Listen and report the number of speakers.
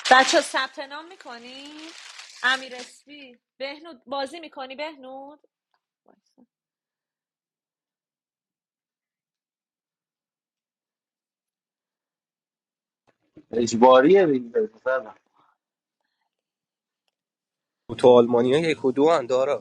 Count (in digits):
3